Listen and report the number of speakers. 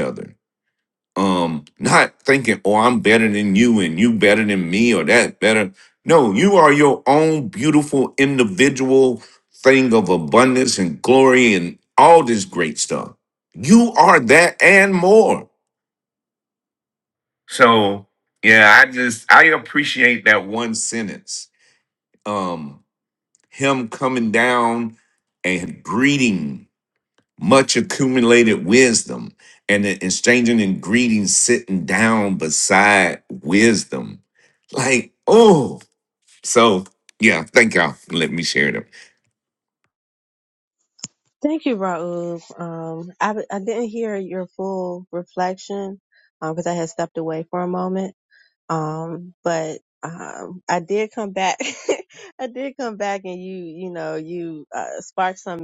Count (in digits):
2